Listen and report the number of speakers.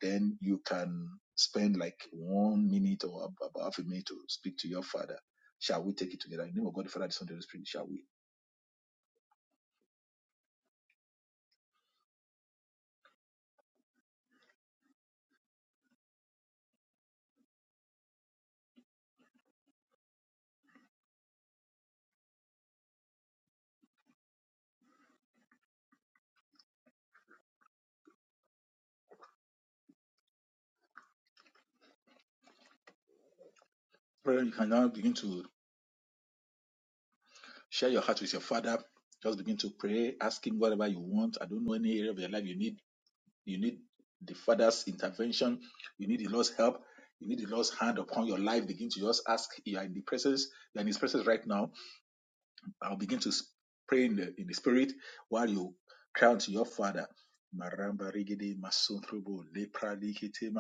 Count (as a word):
one